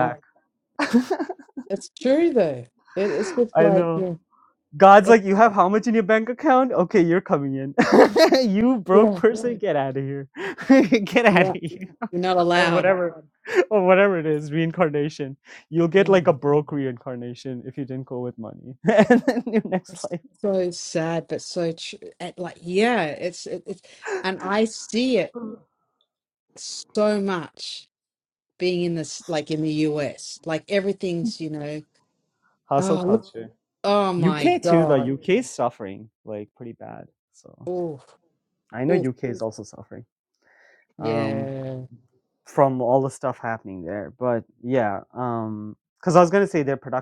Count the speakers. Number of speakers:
two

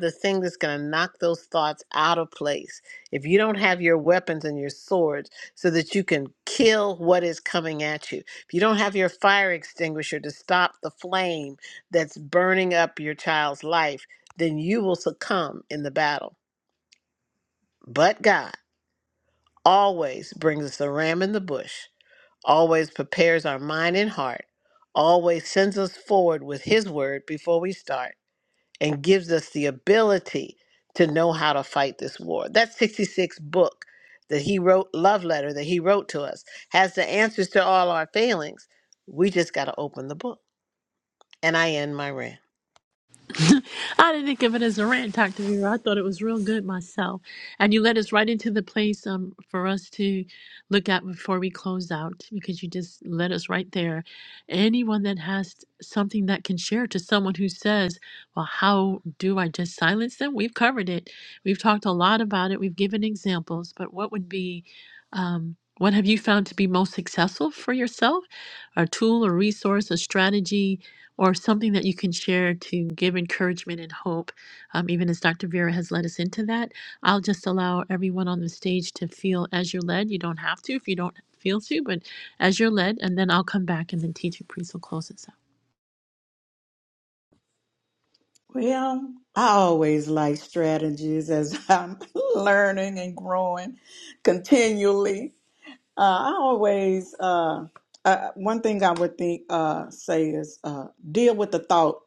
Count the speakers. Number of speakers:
three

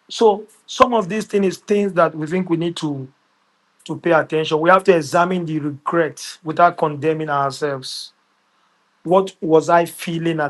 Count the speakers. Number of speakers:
one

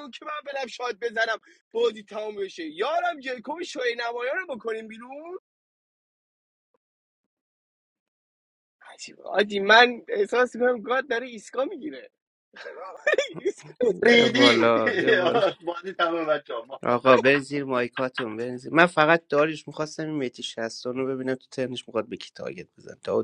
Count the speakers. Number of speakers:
three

